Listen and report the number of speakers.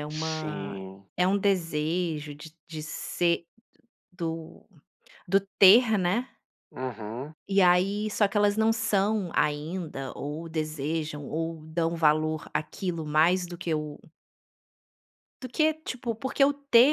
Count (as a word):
two